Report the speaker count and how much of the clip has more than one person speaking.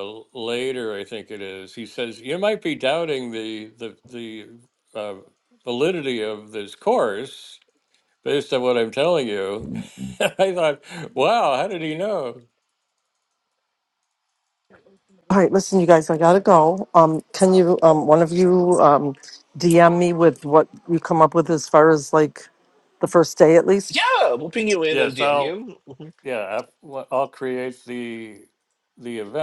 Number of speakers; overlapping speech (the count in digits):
3, about 2%